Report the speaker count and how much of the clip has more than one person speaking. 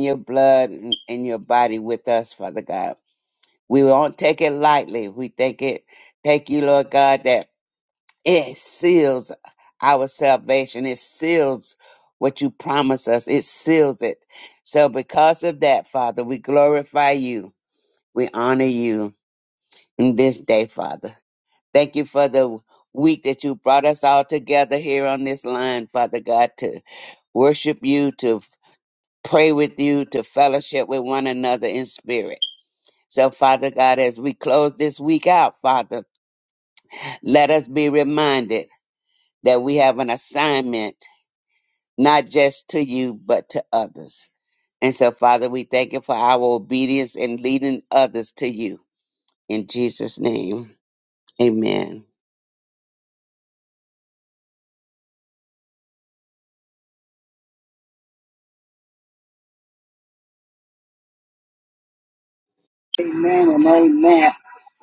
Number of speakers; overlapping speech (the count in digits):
2, no overlap